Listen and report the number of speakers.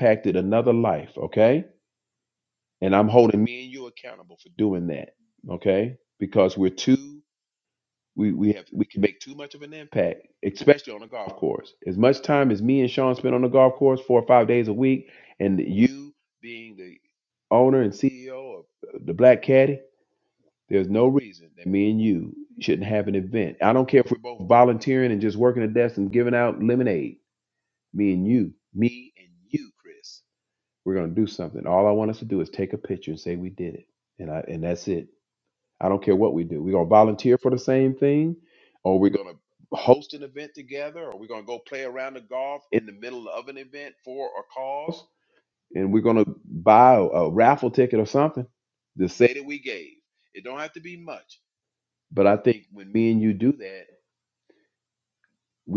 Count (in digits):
1